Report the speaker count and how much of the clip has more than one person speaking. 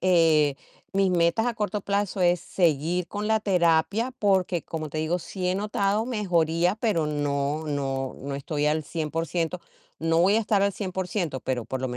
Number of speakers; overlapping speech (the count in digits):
1, no overlap